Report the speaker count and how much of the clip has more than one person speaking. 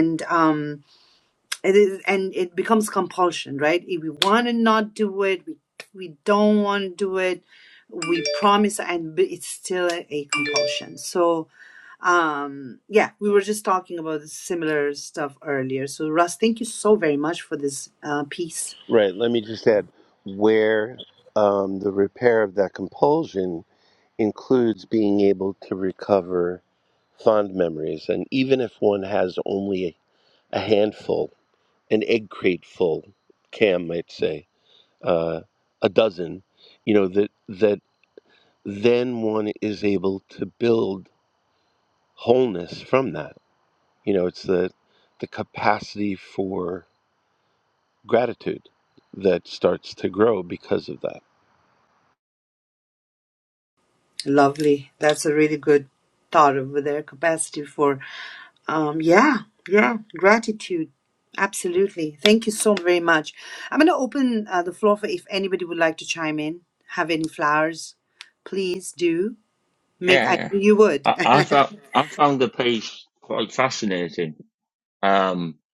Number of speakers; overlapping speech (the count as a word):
three, about 1%